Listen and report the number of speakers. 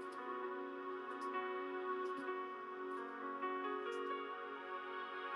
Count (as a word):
zero